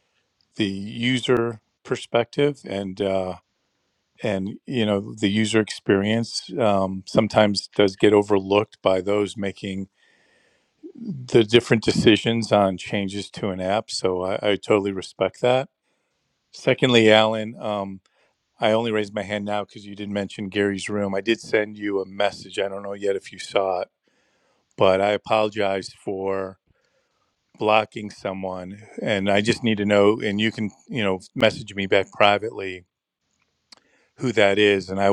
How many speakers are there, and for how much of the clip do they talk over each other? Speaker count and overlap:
one, no overlap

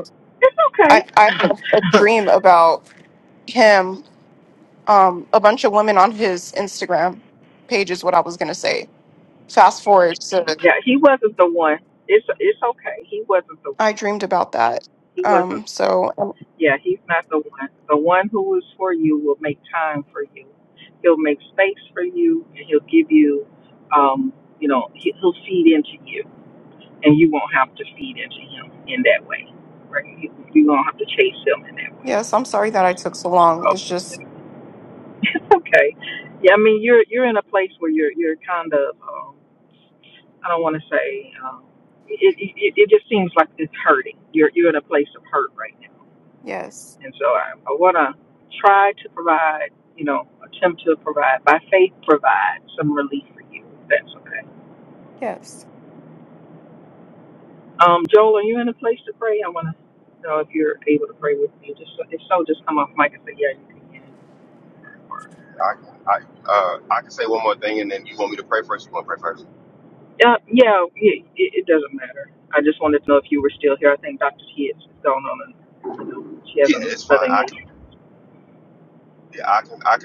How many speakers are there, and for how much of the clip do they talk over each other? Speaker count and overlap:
three, about 3%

